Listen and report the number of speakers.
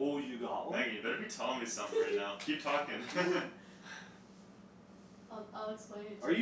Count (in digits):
3